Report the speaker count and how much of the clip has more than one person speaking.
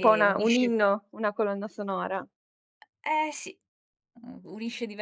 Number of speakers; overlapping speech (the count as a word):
two, about 15%